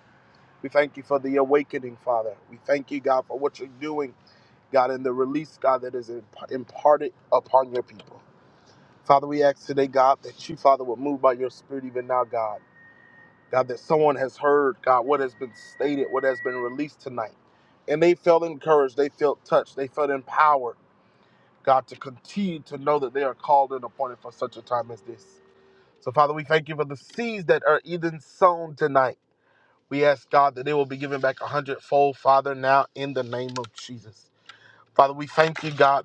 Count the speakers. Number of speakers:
1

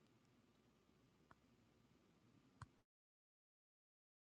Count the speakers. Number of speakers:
0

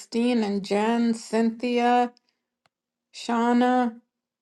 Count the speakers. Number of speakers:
1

